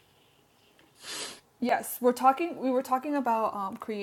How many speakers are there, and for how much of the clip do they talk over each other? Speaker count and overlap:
one, no overlap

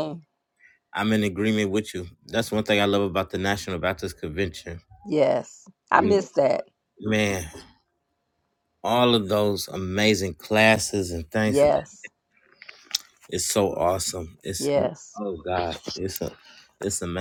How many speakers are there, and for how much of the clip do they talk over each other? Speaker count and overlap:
two, about 3%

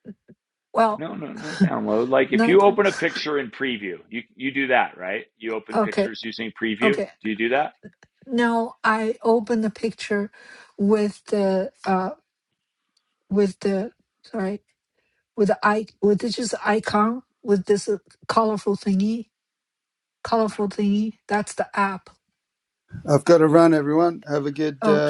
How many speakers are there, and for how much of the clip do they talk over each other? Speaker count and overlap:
three, about 5%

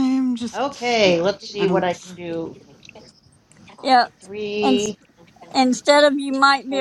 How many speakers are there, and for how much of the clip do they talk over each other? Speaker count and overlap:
three, about 25%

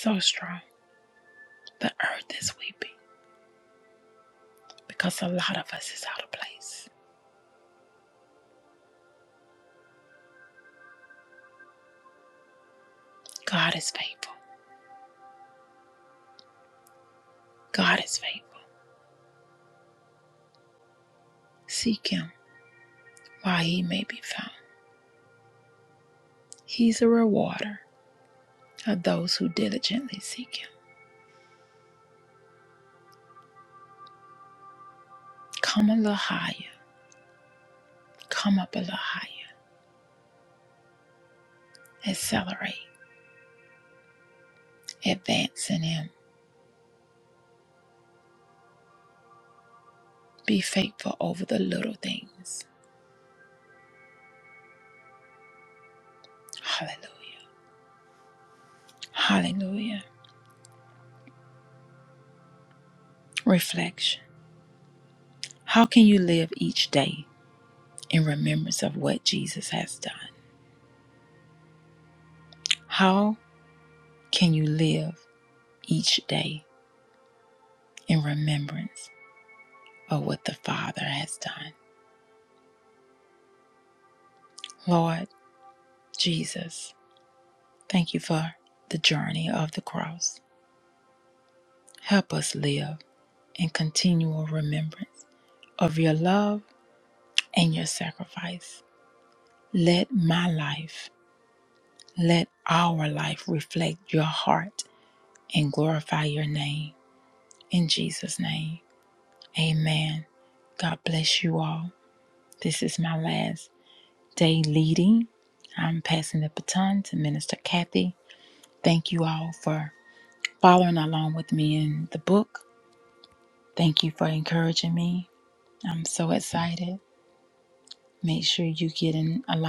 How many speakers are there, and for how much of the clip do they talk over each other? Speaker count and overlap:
one, no overlap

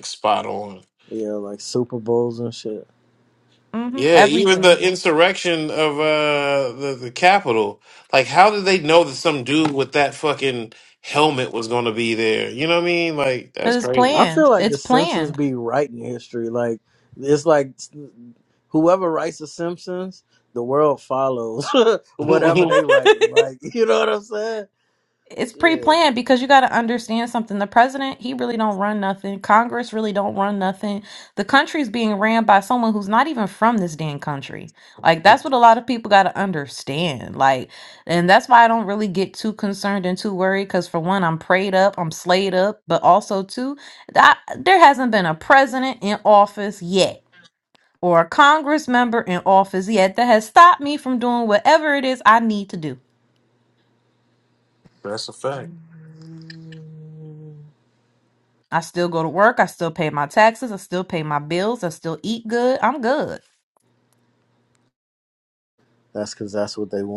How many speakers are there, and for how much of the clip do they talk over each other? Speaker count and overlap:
three, about 5%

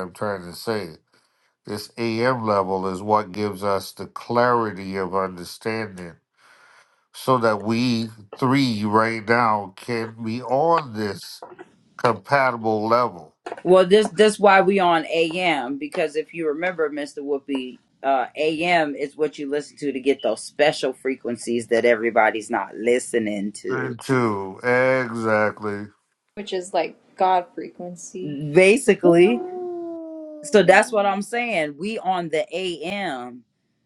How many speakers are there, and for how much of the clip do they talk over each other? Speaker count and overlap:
three, about 2%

